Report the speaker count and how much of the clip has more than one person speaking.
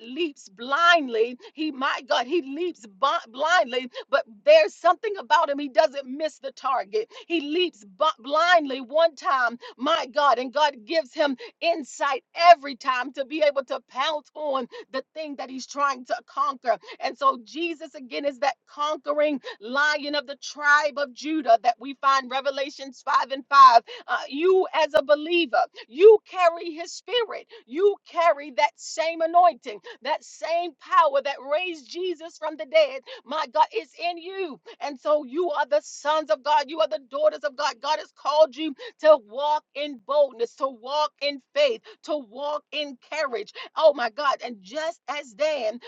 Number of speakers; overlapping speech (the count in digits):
1, no overlap